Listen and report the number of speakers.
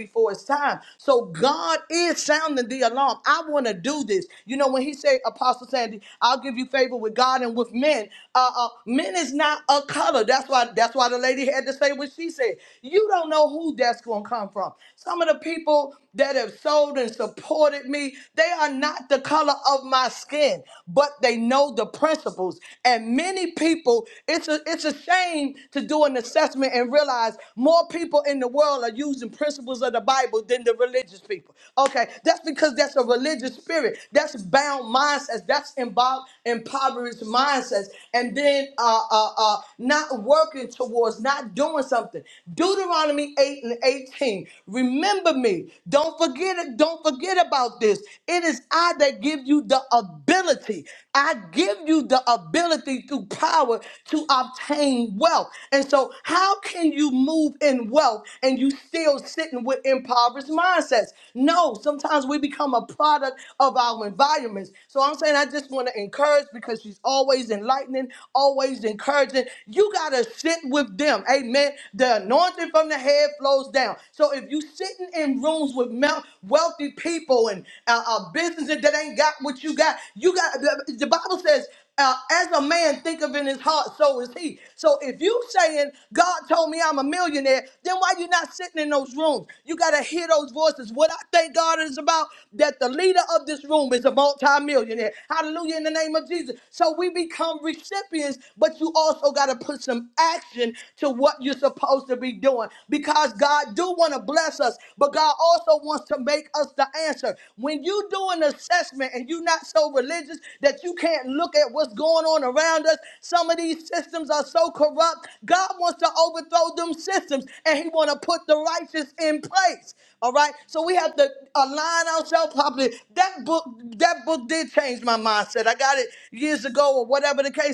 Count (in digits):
1